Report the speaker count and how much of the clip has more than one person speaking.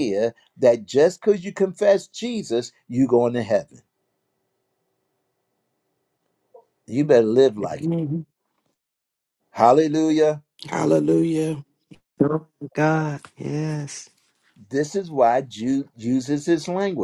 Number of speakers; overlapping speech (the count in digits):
3, about 1%